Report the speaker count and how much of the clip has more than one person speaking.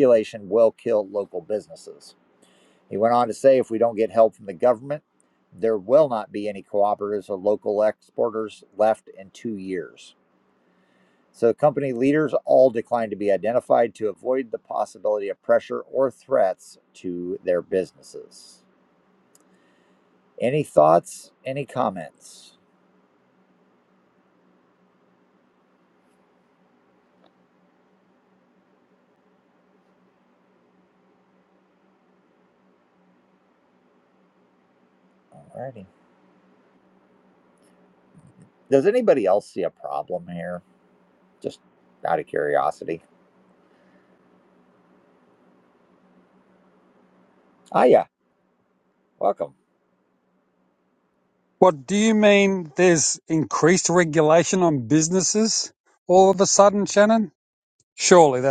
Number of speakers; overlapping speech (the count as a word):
two, no overlap